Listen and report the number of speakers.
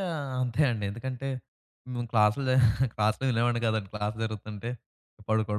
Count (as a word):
one